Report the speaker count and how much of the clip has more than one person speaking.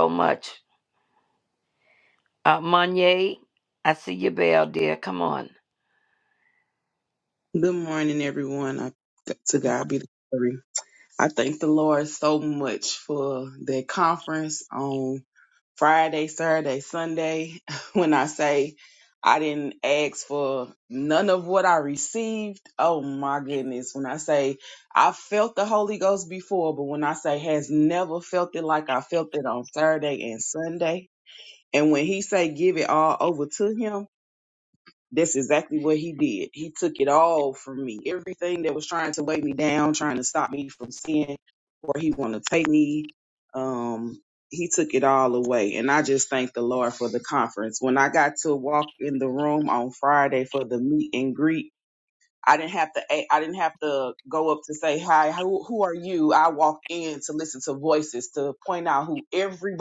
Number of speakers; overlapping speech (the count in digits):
2, about 1%